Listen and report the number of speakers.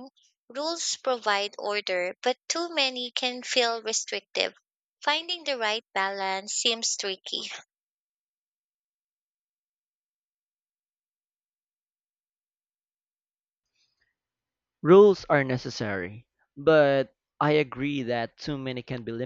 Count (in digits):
2